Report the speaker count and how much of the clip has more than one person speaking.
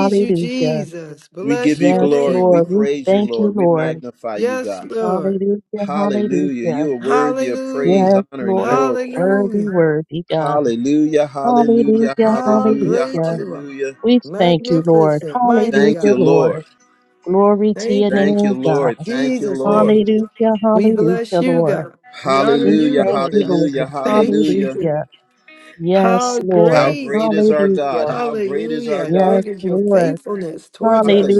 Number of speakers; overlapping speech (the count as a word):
three, about 75%